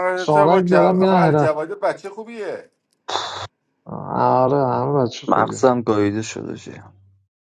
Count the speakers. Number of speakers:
3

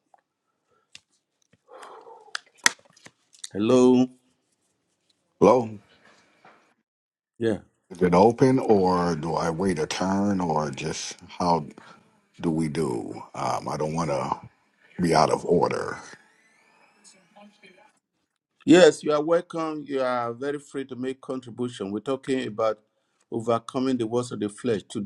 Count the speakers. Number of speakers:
2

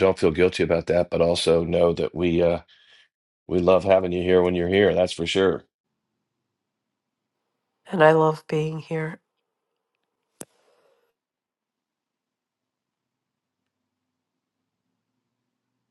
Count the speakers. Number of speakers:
2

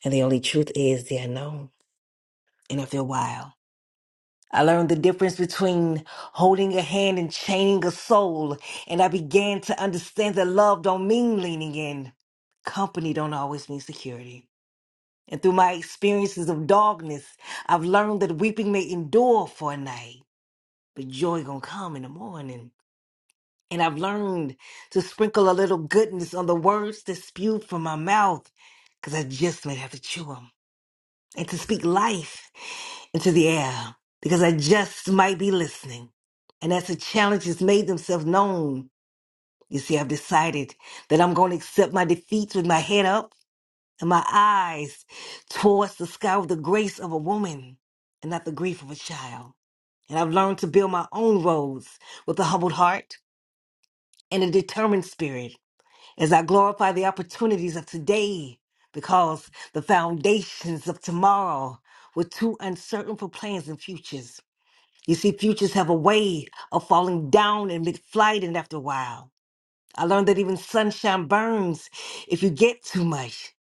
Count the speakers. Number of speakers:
1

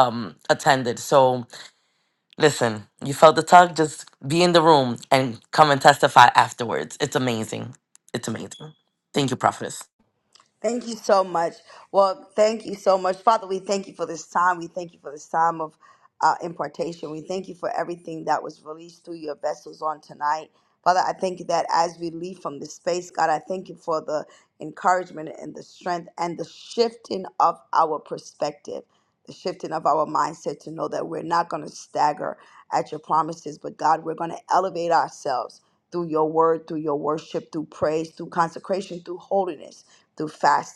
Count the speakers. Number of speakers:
2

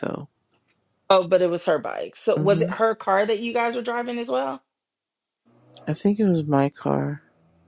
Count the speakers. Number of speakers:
2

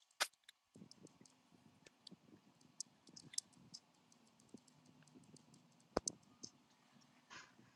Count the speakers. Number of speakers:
0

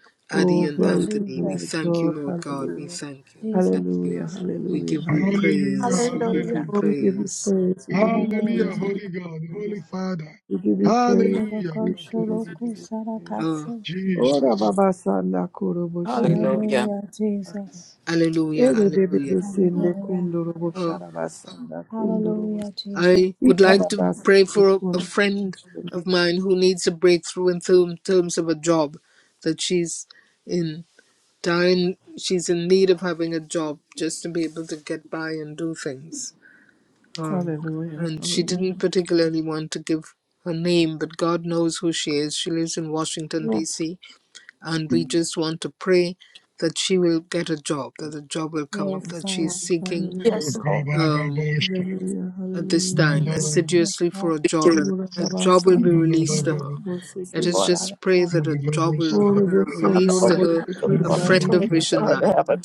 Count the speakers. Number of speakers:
5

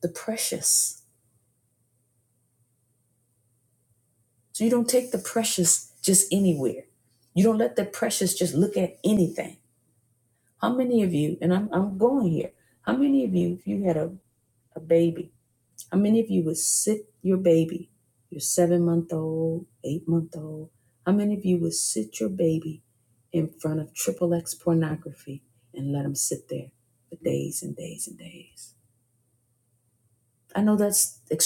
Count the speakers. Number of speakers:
1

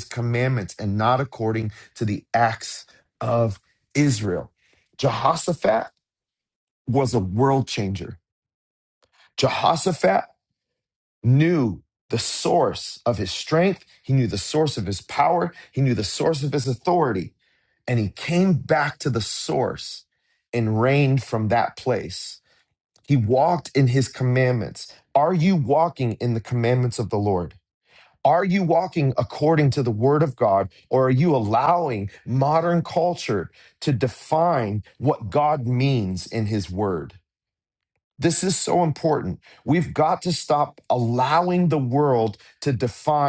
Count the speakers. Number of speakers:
1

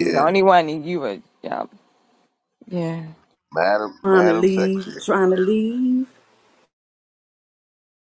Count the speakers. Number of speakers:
3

